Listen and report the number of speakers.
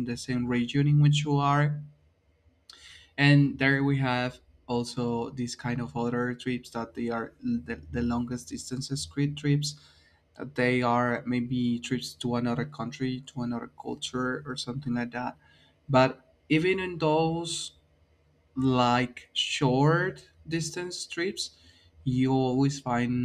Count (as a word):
one